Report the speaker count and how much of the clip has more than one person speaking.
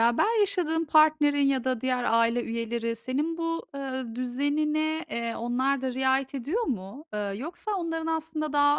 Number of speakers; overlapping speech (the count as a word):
one, no overlap